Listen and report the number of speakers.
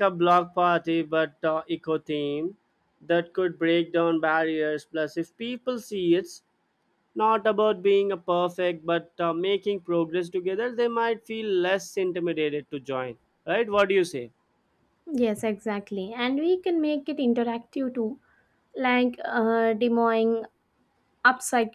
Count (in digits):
2